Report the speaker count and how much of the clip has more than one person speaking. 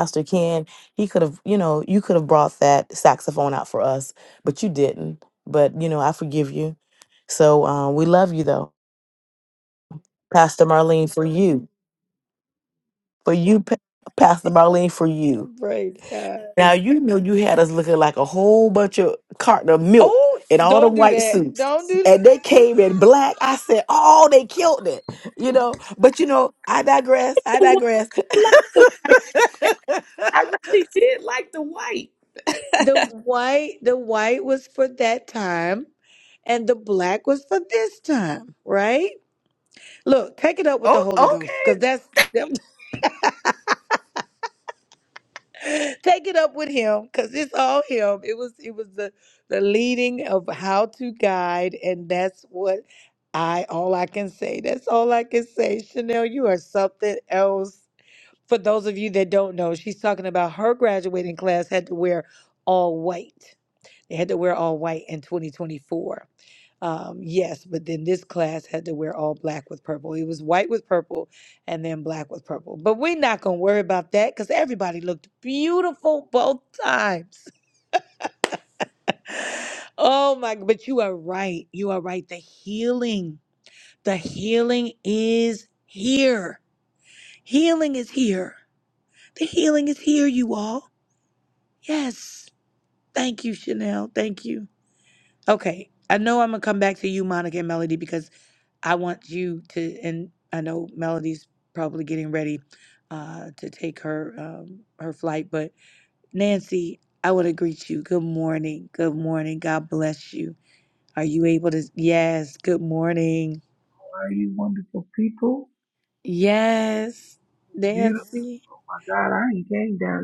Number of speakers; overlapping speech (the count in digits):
4, about 3%